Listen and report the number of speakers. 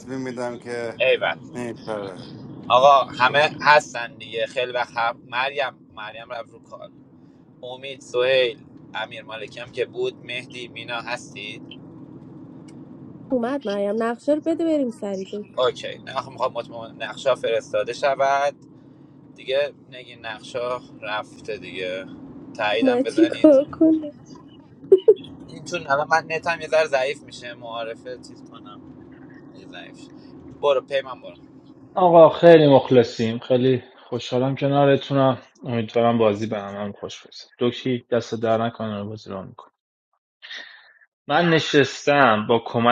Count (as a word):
four